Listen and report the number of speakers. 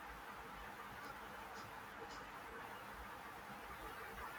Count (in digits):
0